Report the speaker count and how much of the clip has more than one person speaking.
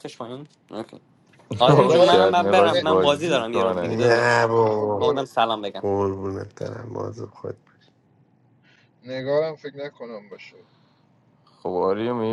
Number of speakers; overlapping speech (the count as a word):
four, about 29%